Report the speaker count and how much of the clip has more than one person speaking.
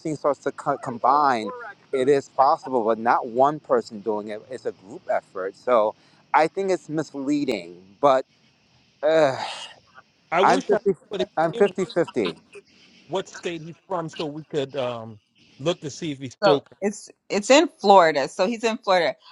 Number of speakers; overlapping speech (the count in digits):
3, about 6%